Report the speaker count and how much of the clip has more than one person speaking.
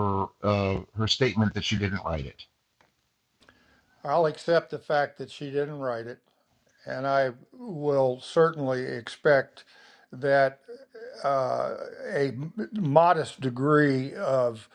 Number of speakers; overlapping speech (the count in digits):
2, no overlap